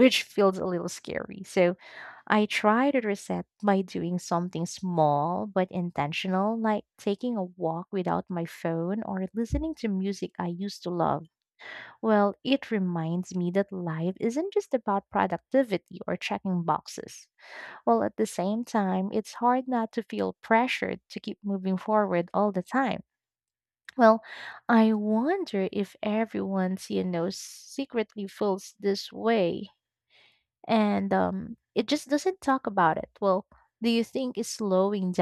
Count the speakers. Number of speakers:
1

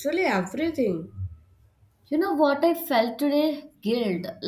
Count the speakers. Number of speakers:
2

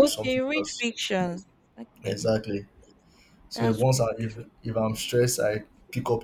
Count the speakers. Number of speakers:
2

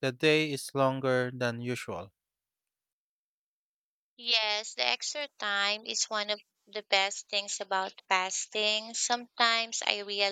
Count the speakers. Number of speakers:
2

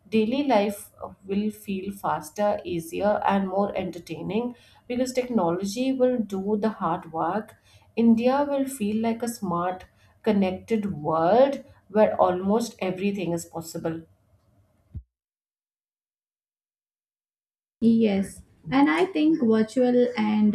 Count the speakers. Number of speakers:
2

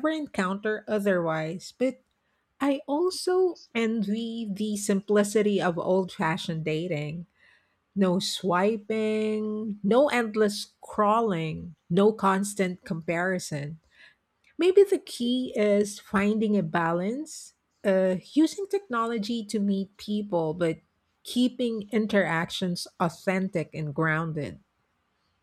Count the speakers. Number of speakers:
1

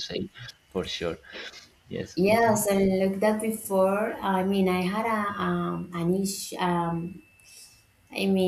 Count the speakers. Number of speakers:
2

